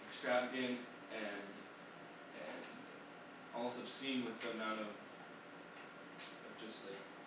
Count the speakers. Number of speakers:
1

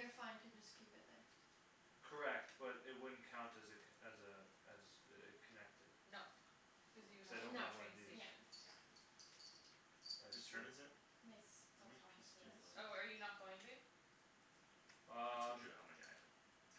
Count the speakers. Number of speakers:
4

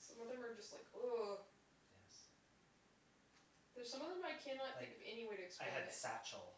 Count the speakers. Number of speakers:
2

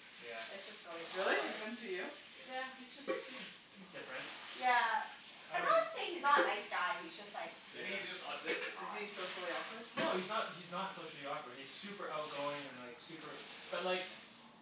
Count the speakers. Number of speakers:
4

